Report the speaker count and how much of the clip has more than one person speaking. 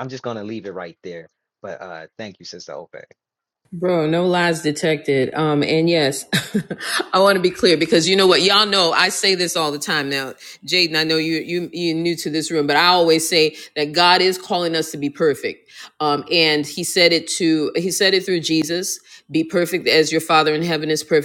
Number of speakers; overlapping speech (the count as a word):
two, no overlap